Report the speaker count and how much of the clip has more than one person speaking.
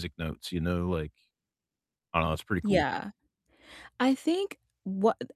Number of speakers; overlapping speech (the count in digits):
2, about 4%